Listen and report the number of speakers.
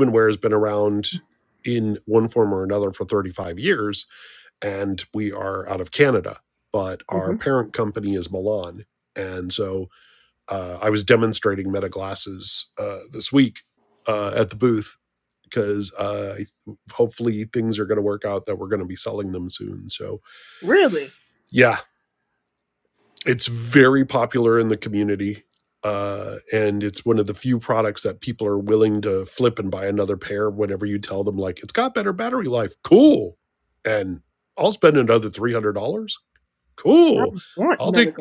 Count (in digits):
2